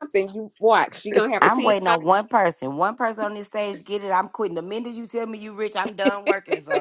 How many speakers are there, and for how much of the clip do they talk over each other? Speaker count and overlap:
2, about 5%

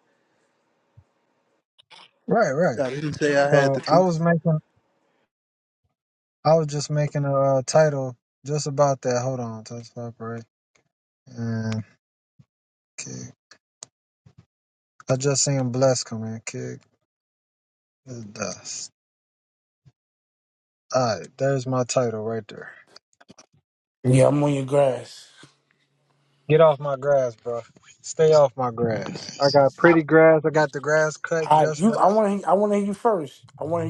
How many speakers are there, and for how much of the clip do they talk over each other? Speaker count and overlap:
3, about 3%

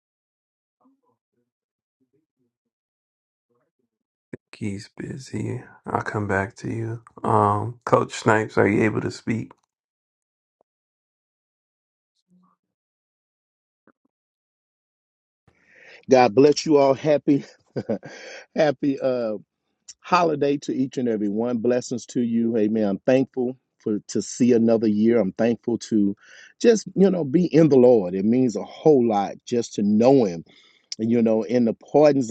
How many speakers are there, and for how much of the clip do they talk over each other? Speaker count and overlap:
2, no overlap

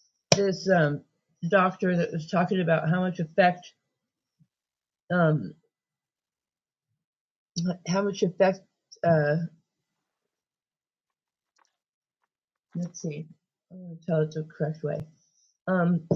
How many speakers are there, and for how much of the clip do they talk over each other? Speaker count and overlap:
1, no overlap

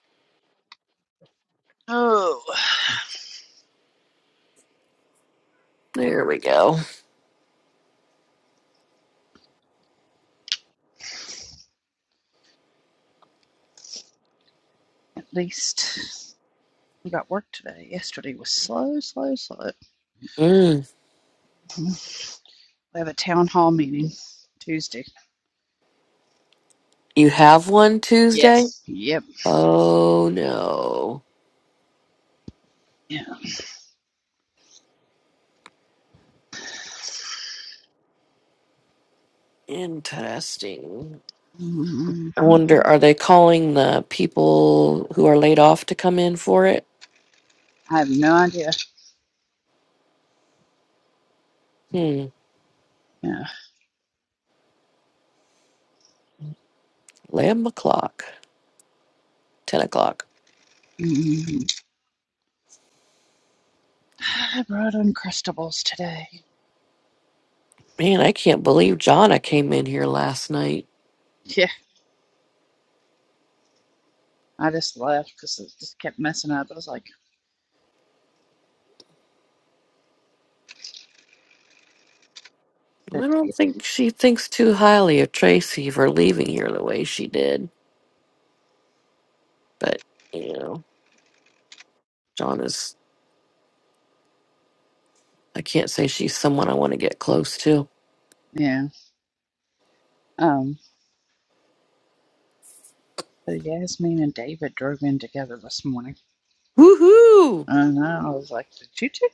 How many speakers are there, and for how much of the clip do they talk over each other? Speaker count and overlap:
2, about 1%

